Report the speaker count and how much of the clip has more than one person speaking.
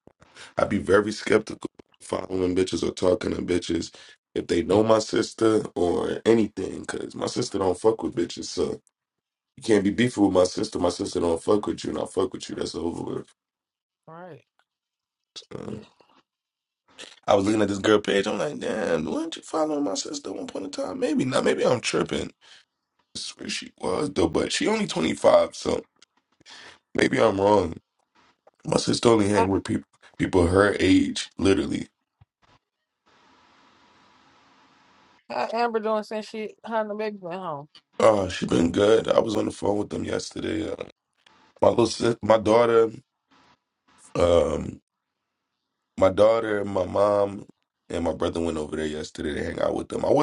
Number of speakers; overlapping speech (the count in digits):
2, under 1%